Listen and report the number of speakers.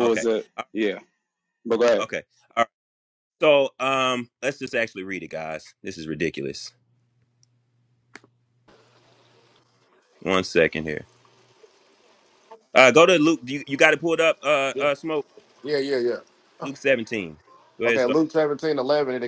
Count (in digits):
3